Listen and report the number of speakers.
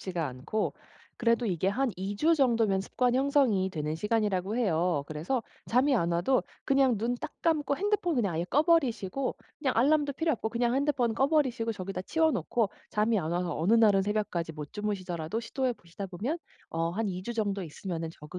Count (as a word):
one